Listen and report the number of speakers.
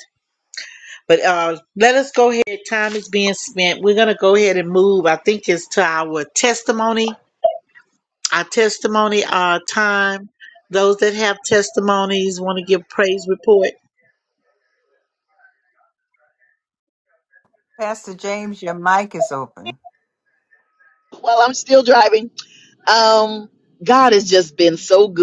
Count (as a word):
three